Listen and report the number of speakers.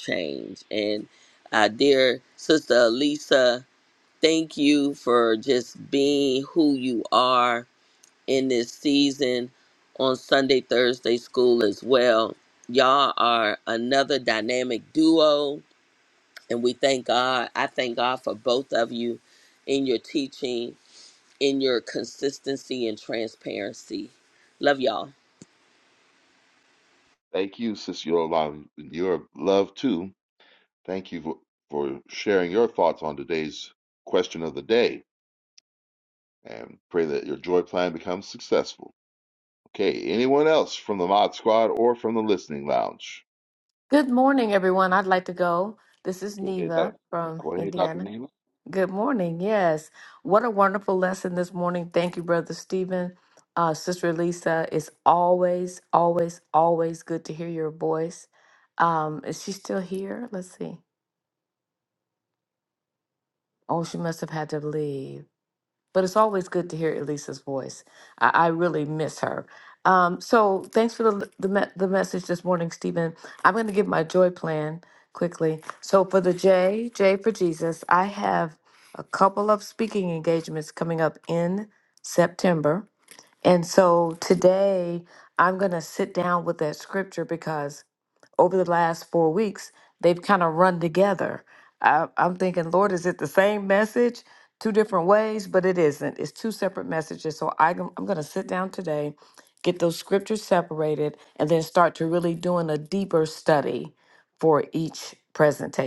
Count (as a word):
three